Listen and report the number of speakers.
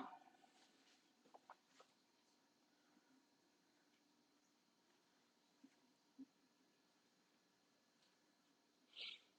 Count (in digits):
0